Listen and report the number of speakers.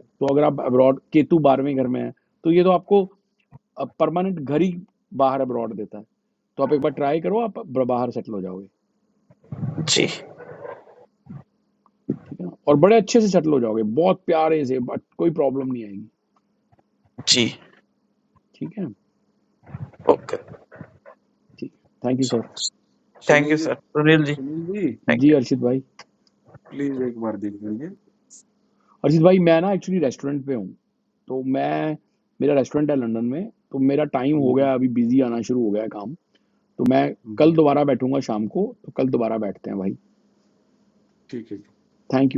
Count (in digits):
3